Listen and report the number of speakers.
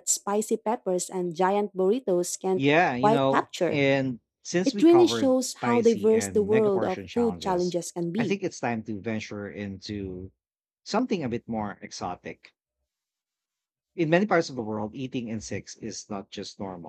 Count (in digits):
2